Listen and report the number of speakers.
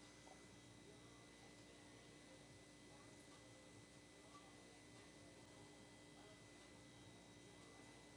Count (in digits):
0